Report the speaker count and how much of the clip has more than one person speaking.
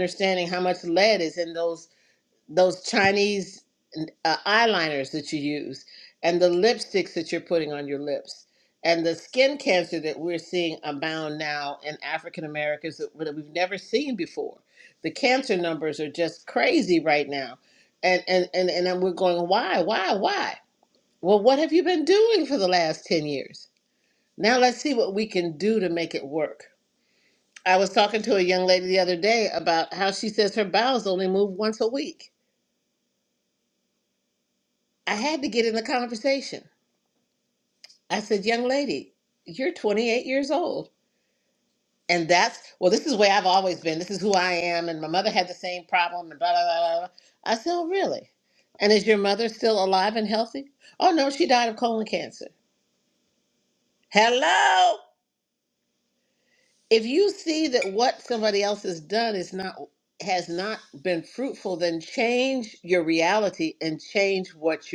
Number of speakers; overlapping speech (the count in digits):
1, no overlap